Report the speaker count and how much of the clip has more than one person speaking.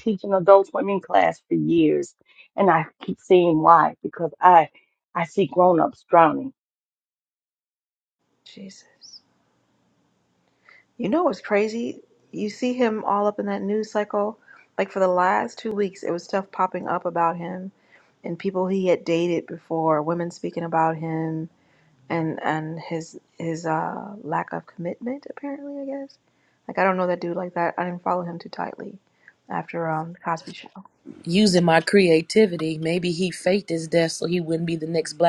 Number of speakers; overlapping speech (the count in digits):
3, no overlap